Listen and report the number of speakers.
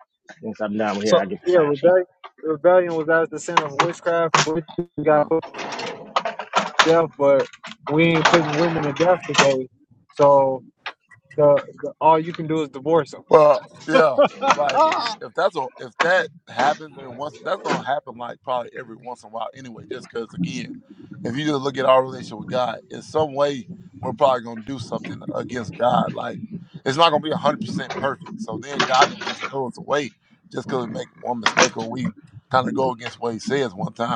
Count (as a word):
three